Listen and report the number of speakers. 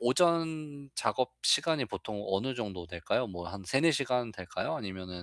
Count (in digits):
1